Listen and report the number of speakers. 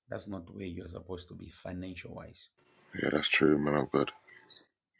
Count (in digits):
2